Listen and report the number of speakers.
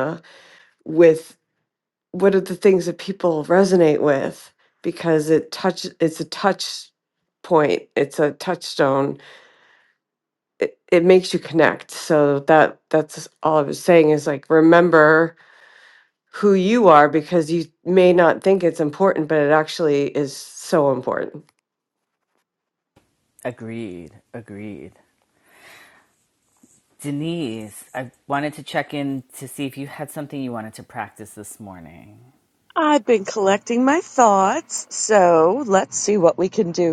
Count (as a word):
three